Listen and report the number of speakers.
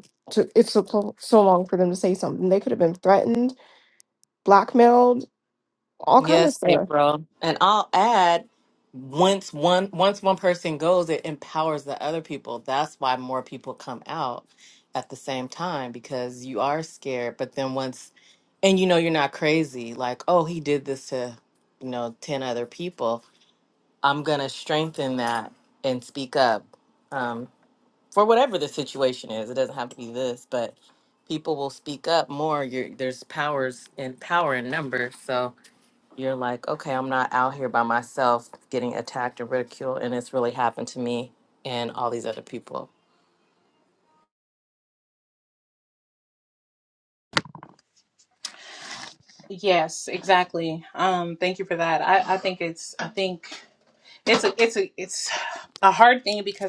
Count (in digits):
3